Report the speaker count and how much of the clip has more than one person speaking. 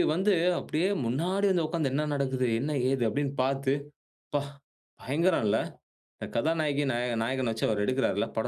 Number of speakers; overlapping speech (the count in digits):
1, no overlap